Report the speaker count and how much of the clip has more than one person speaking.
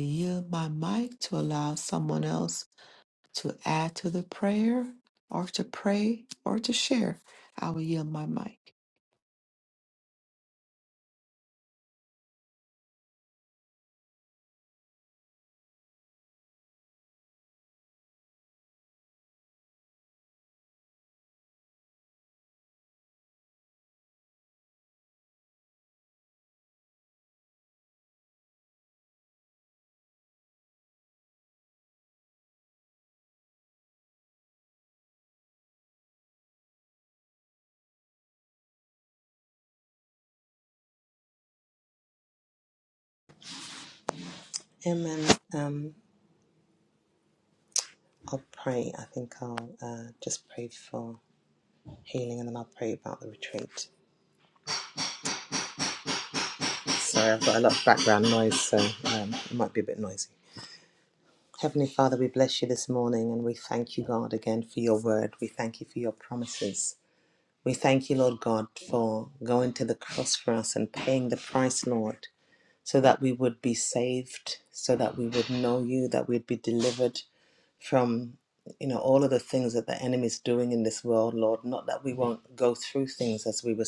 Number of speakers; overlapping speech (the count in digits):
2, no overlap